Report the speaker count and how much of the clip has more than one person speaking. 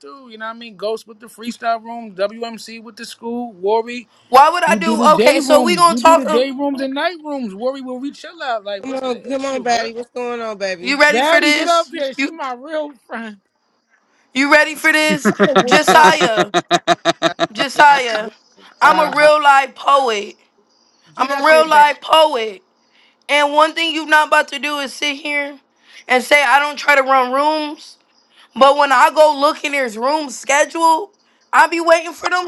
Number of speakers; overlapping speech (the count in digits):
3, about 18%